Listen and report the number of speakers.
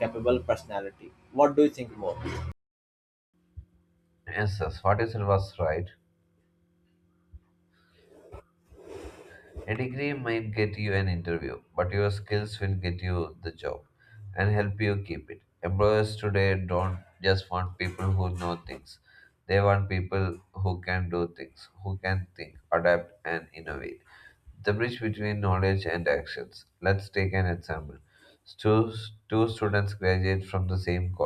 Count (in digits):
2